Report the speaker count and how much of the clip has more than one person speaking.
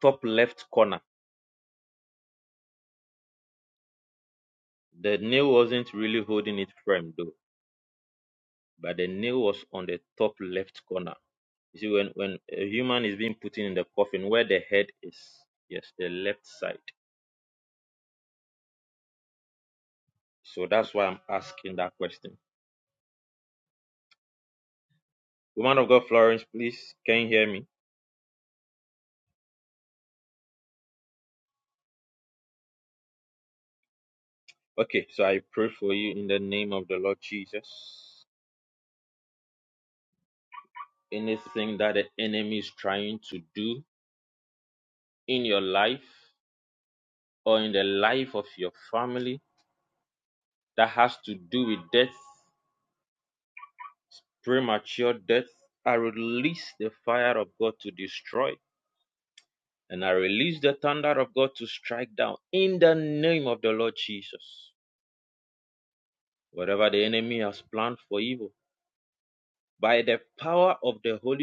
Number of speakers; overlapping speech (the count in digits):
1, no overlap